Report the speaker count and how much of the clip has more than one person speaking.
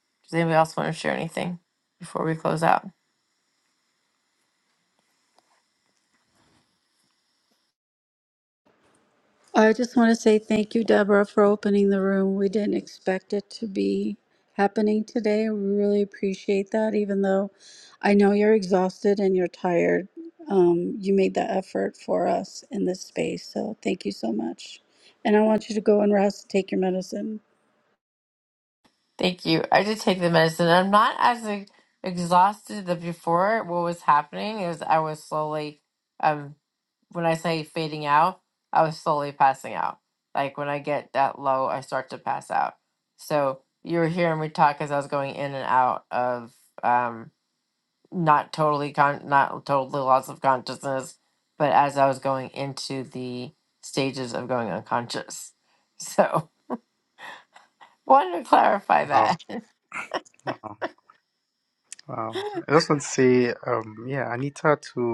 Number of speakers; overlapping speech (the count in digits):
3, under 1%